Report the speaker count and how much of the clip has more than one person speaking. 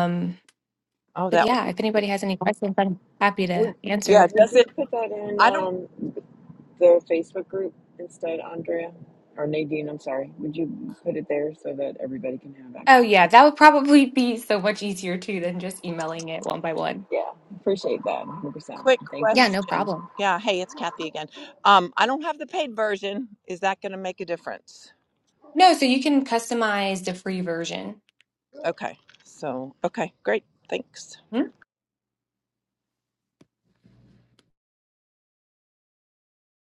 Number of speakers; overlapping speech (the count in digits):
3, about 9%